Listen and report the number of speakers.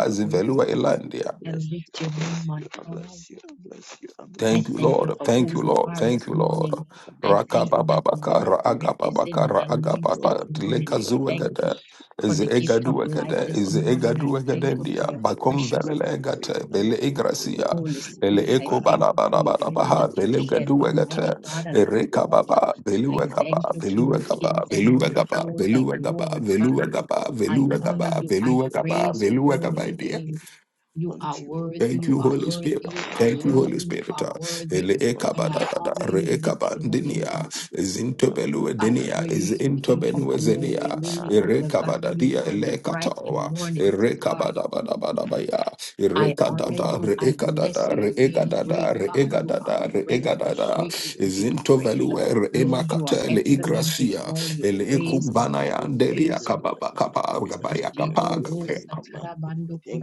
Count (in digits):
3